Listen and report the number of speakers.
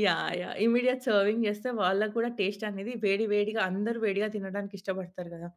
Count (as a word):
one